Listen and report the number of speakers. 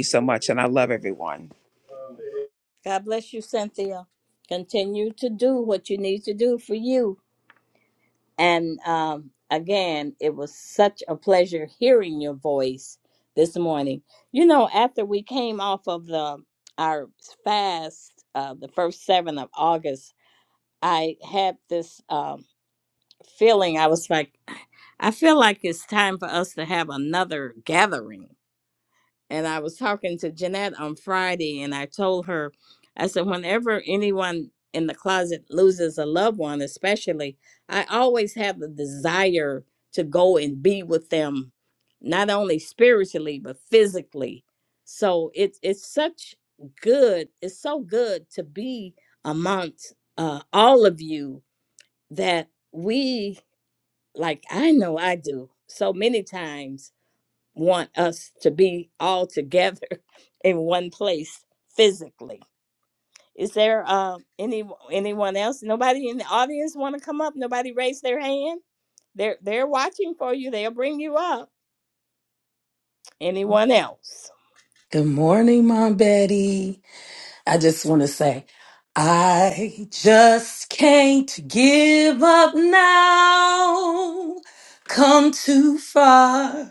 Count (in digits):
3